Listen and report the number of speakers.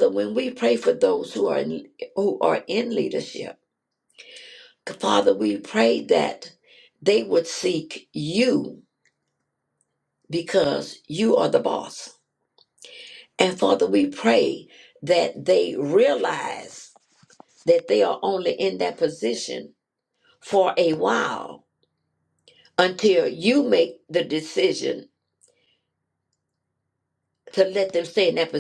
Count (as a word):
one